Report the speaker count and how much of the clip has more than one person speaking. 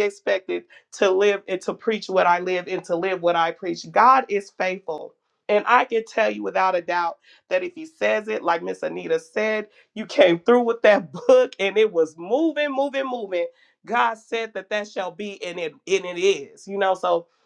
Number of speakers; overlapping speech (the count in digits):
1, no overlap